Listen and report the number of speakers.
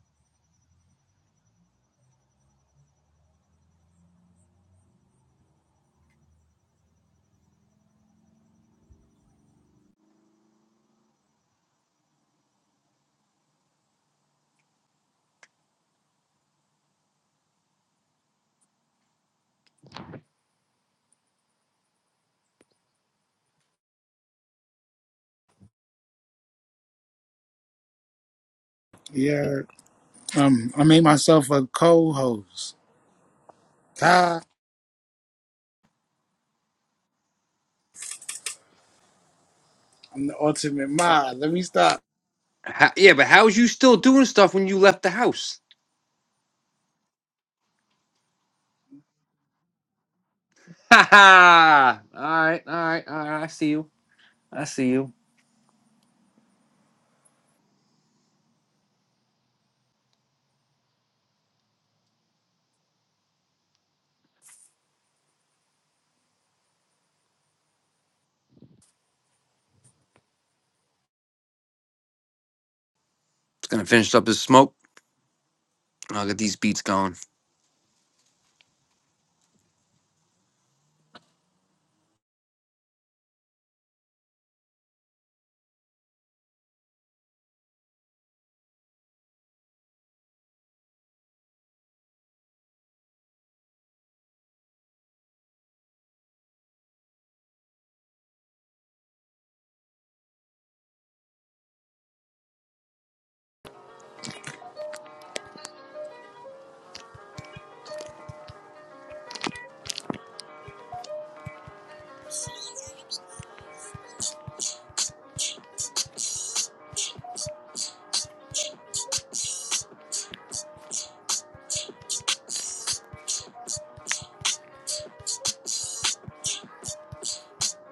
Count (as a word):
two